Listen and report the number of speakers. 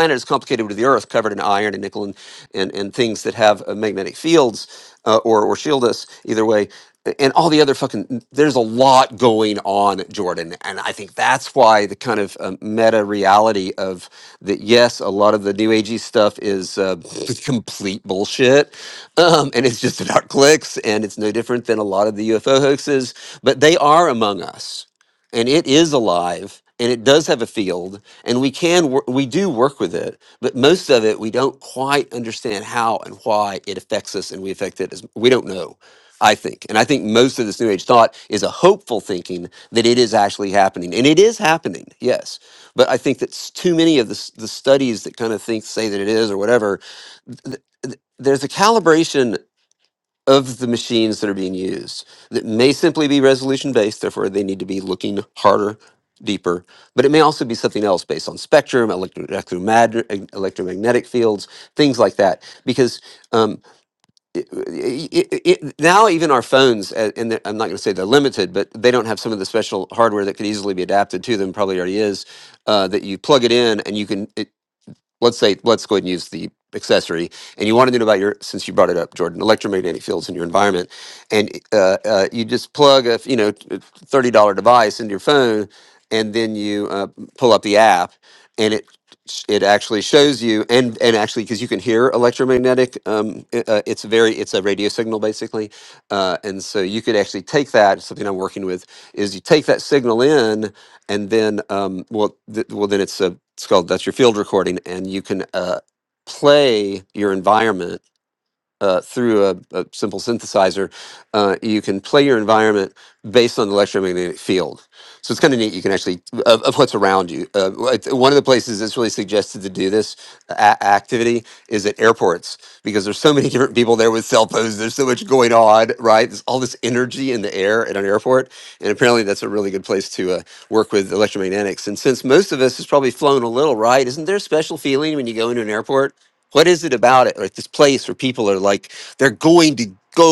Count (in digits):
1